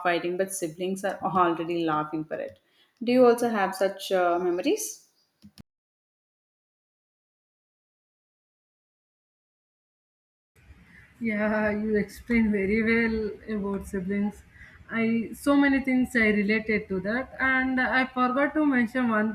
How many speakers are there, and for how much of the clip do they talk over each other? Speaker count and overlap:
two, no overlap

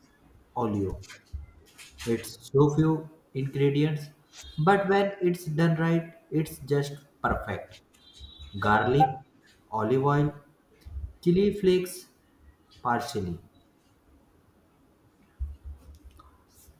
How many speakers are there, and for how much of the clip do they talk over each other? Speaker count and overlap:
one, no overlap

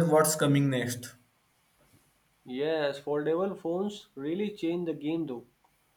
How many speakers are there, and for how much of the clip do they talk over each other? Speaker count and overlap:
two, no overlap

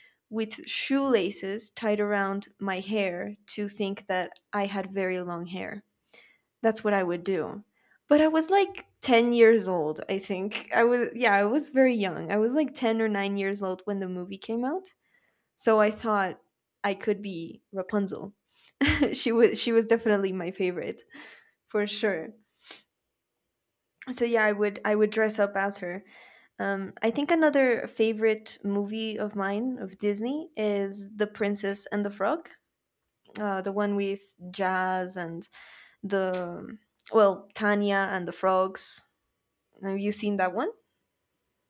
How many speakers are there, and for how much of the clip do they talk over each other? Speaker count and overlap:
one, no overlap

